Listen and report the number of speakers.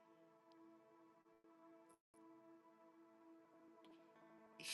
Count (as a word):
zero